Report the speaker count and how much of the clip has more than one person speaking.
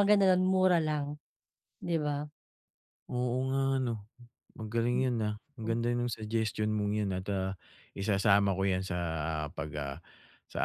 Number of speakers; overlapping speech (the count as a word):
two, about 2%